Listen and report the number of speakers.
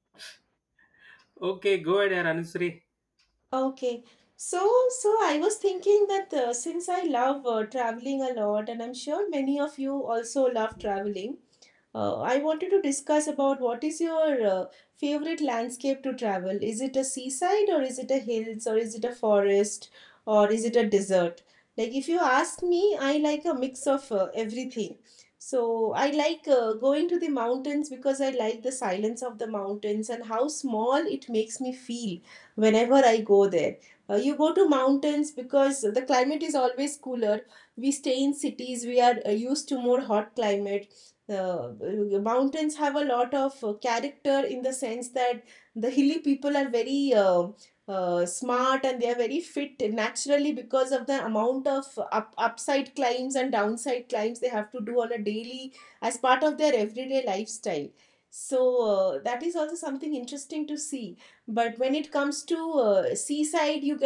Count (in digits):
2